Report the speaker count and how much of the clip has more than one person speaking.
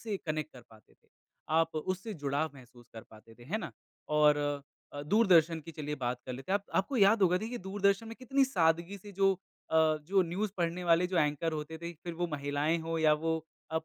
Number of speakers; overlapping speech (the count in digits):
1, no overlap